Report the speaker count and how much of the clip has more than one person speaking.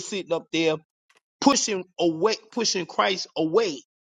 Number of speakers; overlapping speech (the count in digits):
1, no overlap